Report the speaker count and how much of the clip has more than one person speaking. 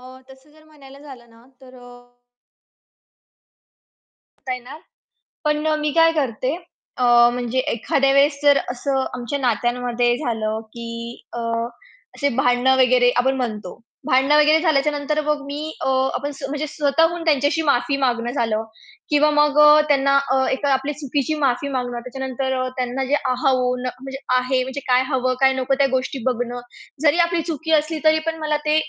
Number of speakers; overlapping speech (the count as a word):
one, no overlap